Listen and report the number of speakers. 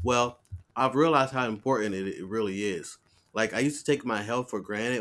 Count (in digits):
1